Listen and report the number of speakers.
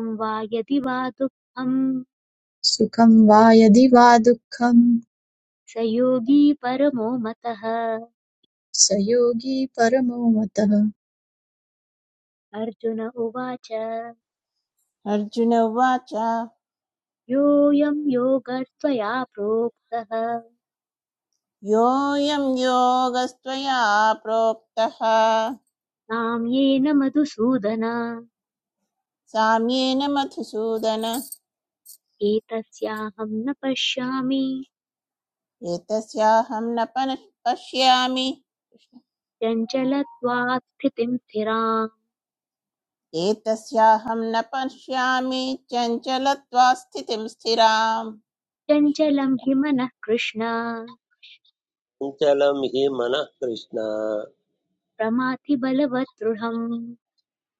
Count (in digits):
4